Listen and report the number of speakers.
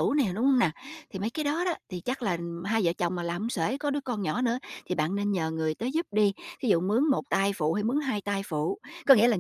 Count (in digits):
1